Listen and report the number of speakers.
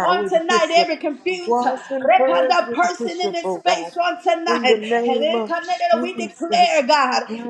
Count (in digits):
2